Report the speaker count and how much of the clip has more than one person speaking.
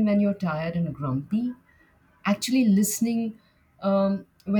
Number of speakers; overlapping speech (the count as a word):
one, no overlap